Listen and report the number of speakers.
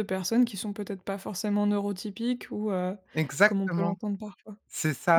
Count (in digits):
2